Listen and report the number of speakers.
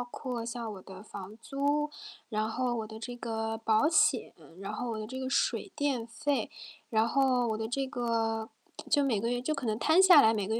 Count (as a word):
one